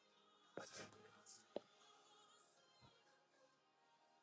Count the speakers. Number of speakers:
0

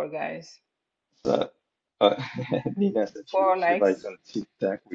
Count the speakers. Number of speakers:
2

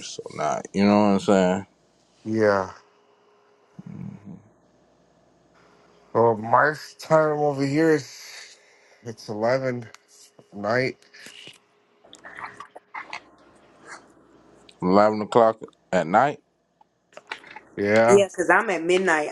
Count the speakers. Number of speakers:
3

